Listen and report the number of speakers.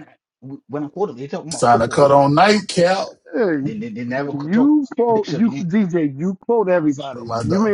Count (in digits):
3